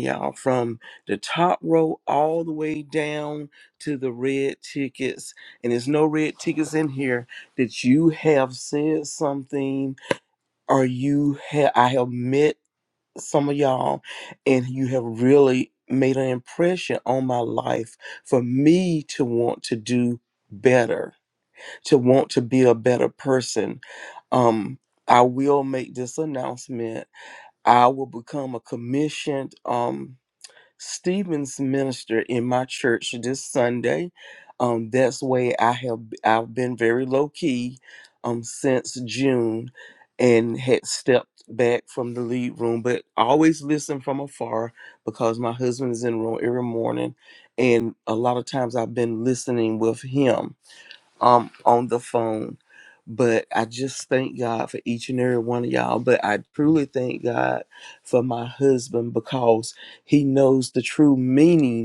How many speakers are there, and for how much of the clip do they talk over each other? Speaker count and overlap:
1, no overlap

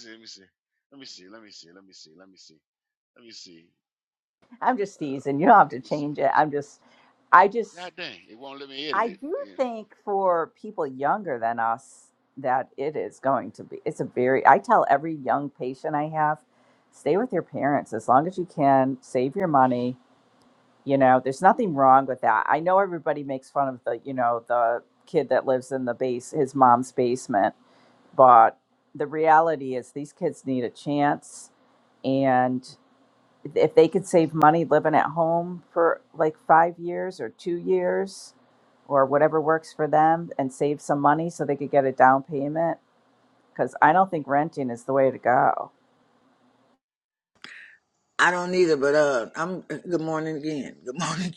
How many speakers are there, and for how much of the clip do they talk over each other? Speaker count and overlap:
3, about 2%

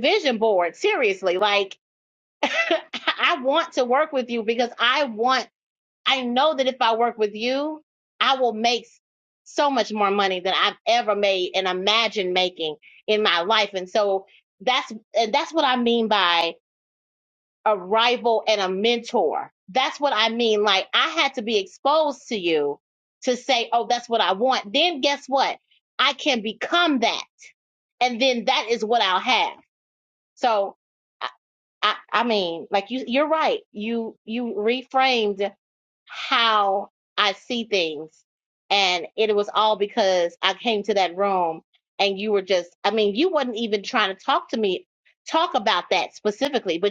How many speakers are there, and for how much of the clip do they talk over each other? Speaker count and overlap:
1, no overlap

